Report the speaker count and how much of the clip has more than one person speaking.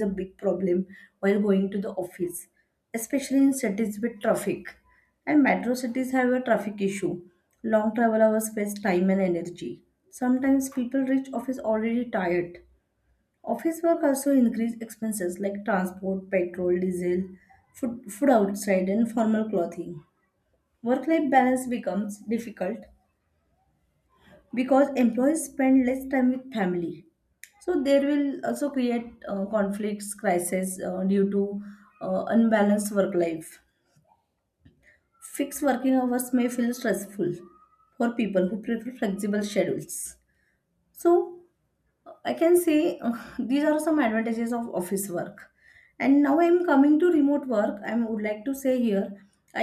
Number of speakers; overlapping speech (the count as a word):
one, no overlap